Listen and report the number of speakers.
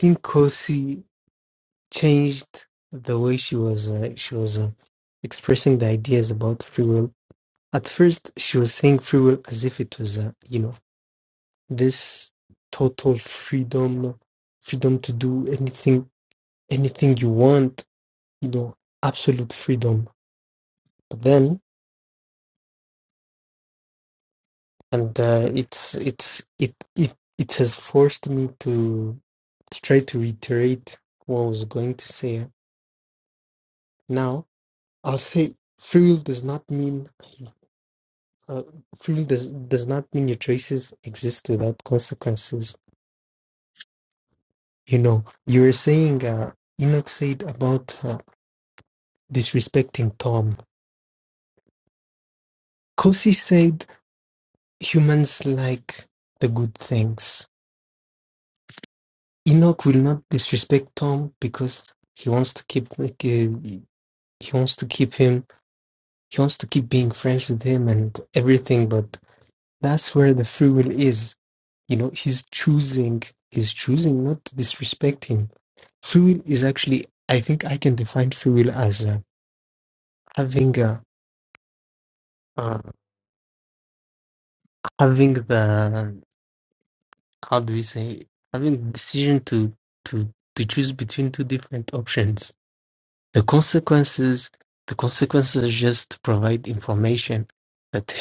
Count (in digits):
1